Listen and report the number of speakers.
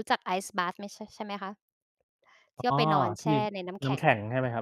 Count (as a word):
two